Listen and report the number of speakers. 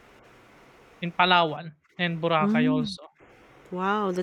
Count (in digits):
2